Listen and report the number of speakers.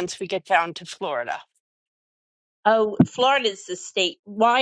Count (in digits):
2